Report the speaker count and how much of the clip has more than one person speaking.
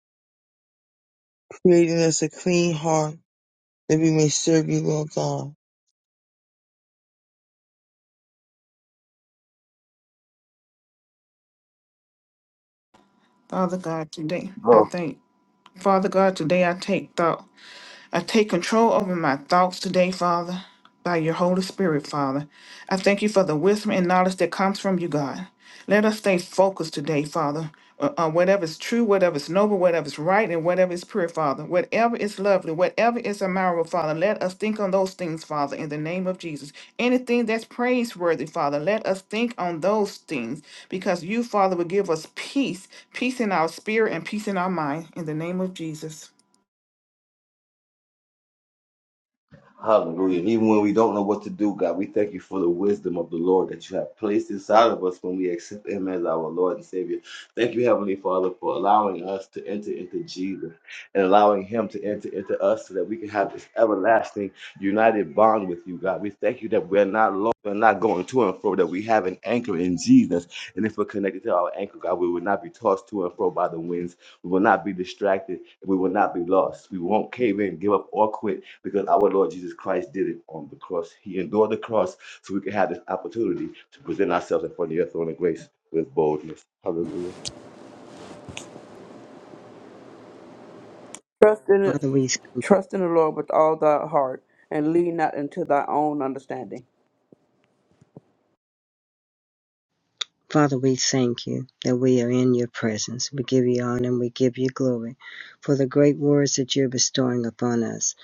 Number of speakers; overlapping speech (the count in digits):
5, under 1%